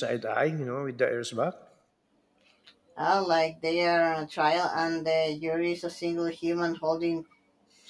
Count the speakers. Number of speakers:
two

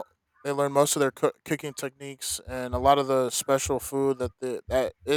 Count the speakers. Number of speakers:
one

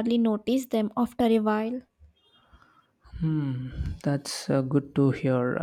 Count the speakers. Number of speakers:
two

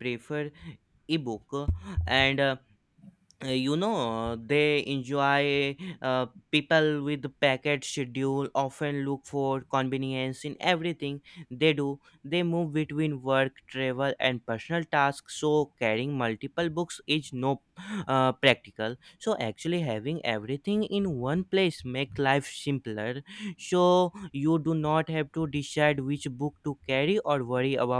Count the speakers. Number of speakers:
one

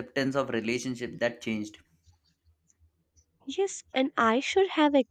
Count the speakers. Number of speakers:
two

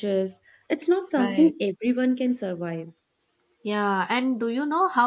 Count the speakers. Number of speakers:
two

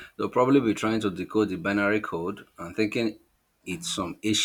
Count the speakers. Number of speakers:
one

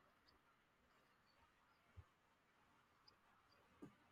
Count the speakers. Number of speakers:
zero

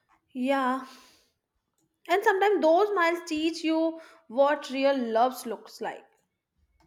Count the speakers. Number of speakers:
one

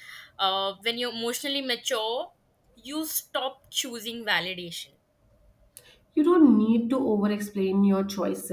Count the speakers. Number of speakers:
two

